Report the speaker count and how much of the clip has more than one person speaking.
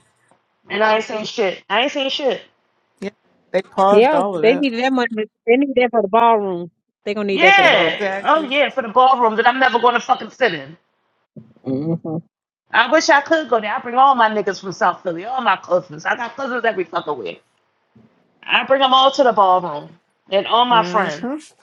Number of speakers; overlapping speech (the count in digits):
3, about 11%